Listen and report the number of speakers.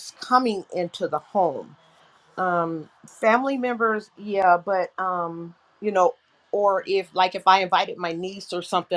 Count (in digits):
1